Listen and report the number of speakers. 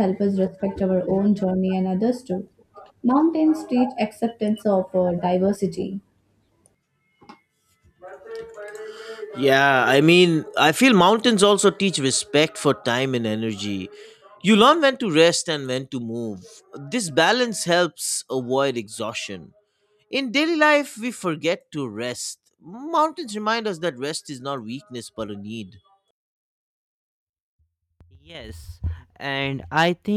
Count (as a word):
three